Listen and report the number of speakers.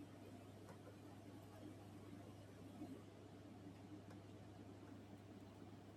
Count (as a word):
zero